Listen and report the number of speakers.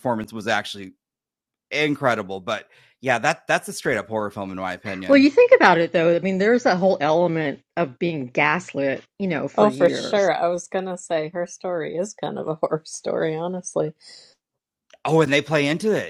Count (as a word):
three